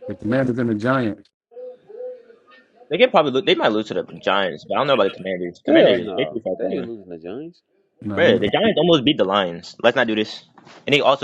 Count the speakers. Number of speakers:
3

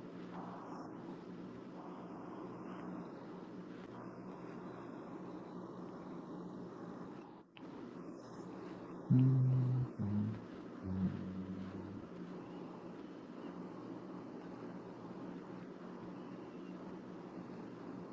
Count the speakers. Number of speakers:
0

